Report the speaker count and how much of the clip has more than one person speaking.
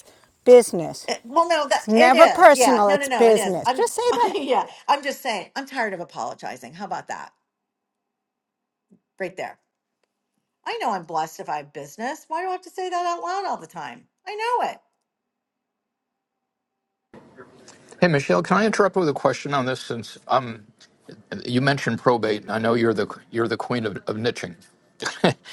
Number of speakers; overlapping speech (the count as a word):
three, about 8%